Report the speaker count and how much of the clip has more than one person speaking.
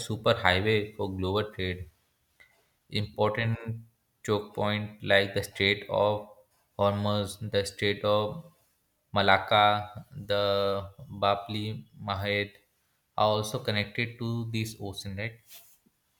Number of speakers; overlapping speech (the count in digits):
1, no overlap